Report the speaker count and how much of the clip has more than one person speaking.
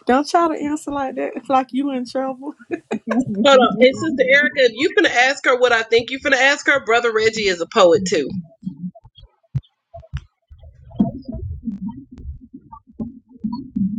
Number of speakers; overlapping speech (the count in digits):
2, no overlap